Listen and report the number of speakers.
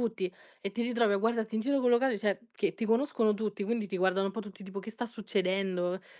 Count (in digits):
1